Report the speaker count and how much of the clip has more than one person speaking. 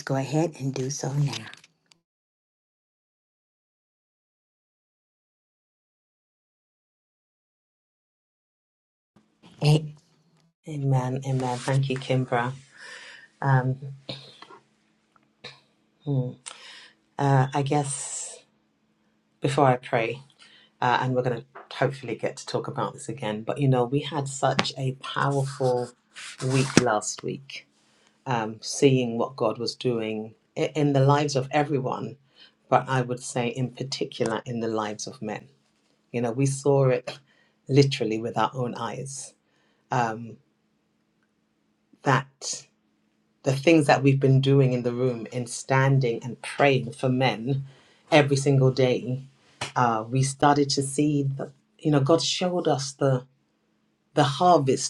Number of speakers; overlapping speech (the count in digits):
2, no overlap